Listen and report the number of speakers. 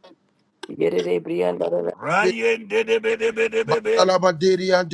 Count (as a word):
three